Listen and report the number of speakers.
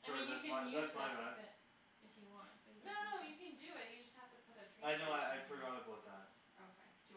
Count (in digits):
3